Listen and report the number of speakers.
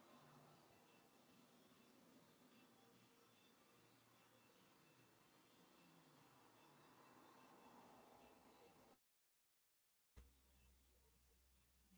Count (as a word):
zero